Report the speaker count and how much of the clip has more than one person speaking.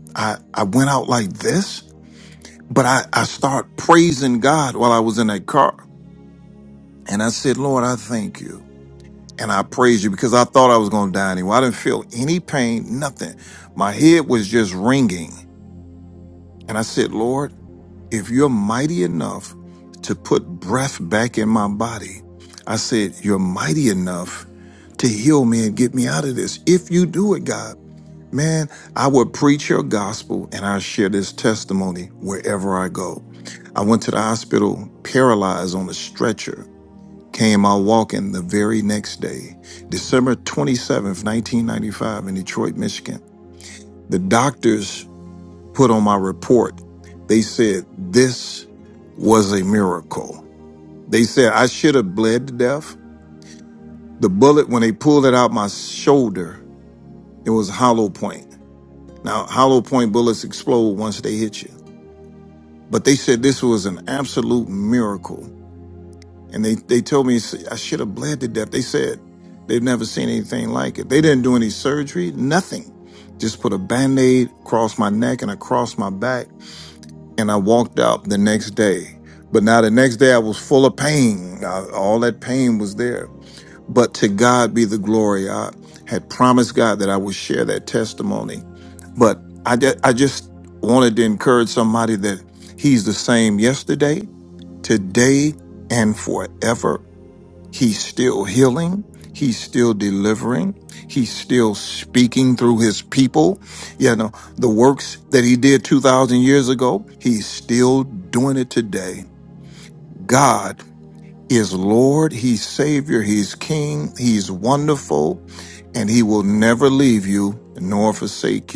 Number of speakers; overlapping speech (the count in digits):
1, no overlap